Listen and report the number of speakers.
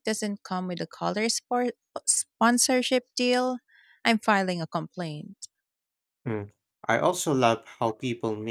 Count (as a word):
two